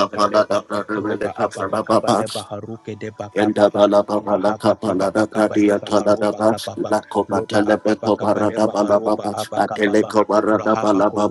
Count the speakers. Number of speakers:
2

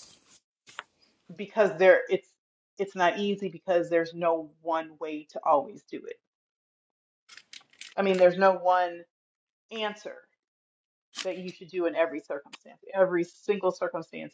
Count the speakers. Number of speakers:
1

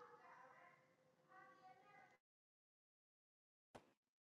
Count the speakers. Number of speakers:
0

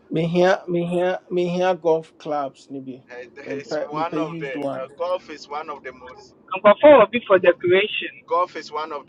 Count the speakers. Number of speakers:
3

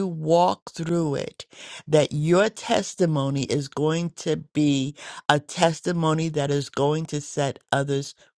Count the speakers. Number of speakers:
1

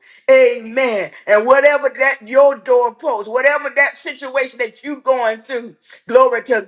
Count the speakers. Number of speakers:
1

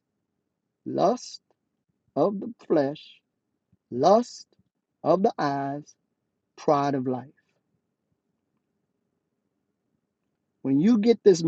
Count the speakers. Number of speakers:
1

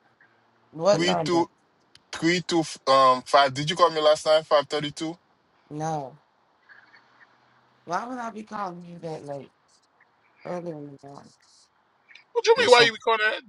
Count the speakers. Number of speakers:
3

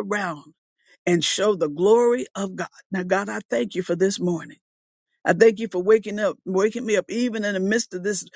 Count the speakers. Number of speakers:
1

